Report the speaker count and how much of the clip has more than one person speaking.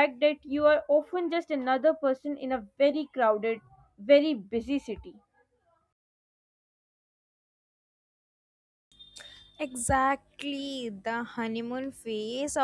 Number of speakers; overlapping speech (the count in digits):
2, no overlap